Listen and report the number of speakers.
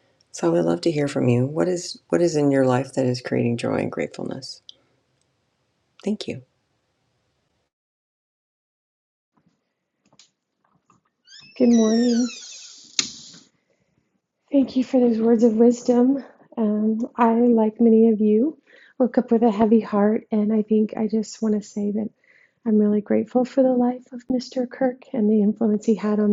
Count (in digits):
2